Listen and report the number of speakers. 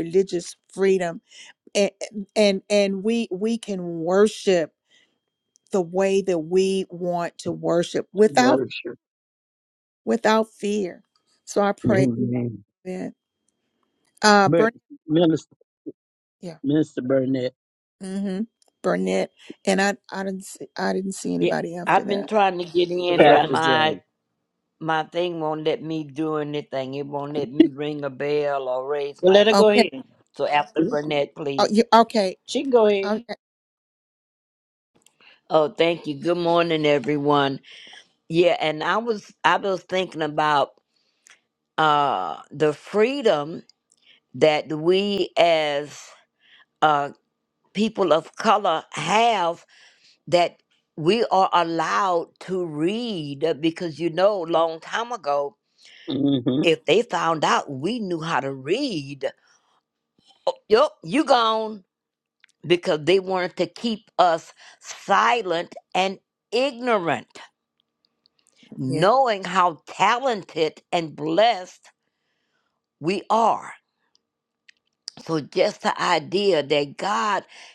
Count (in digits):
4